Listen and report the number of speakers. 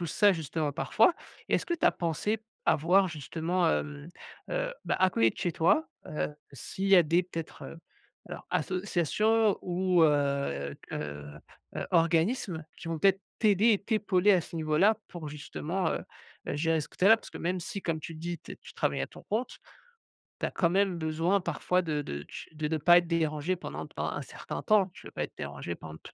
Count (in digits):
1